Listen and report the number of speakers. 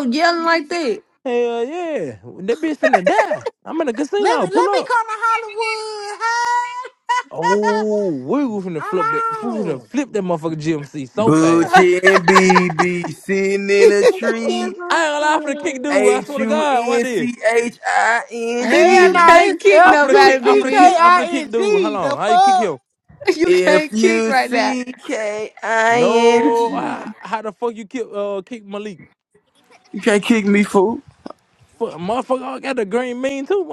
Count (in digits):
4